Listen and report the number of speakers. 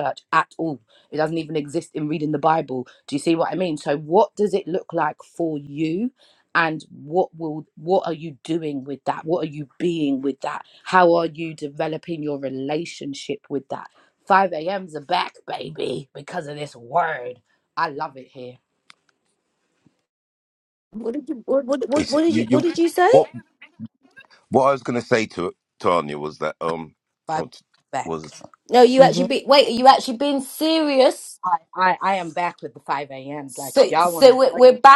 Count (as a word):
three